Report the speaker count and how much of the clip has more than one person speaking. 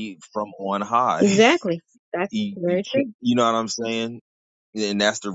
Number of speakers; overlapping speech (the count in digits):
2, about 17%